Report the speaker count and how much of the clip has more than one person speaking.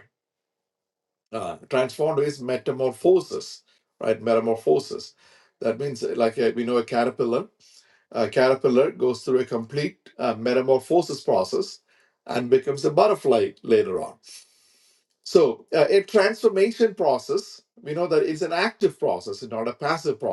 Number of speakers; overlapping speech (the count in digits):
1, no overlap